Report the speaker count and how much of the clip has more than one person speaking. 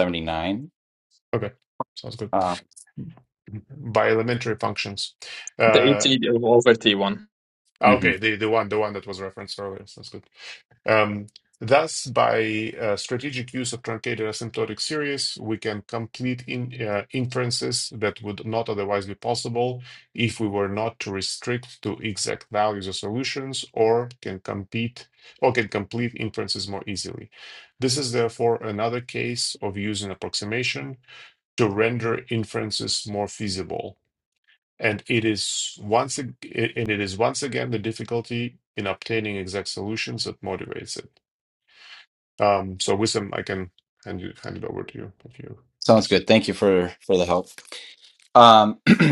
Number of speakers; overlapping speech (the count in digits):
3, about 2%